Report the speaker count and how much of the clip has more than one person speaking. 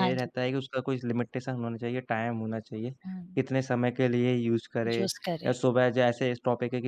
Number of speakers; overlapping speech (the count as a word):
two, about 9%